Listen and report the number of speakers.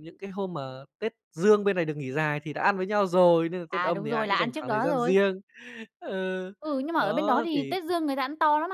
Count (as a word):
two